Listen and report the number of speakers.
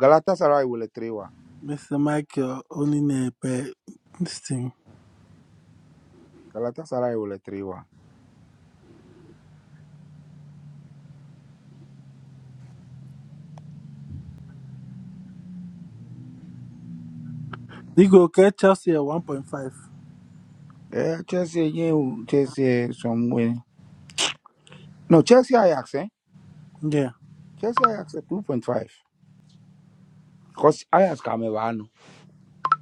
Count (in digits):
2